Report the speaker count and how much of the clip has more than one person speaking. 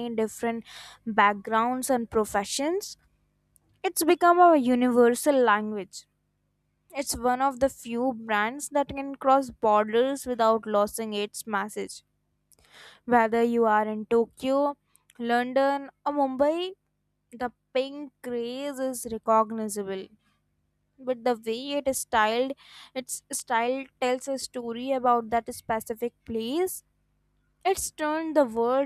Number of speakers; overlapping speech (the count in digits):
1, no overlap